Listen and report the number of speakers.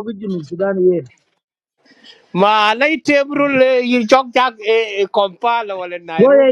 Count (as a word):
two